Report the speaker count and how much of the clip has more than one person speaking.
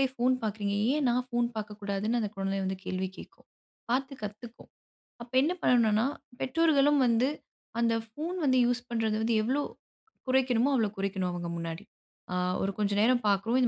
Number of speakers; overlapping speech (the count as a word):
one, no overlap